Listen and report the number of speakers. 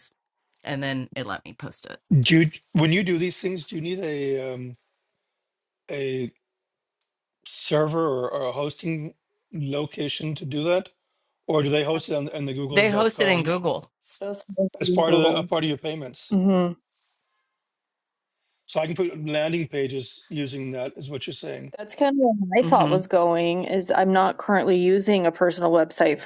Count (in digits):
3